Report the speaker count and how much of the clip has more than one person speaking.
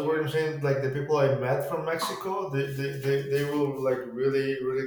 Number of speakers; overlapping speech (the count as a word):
one, no overlap